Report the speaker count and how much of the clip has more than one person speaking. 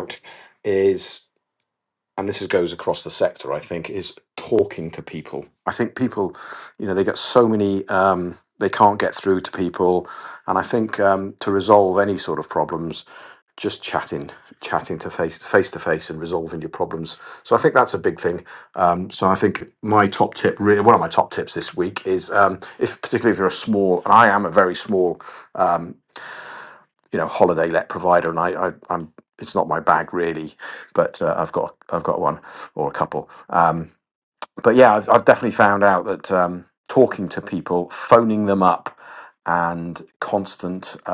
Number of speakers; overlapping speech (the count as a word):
one, no overlap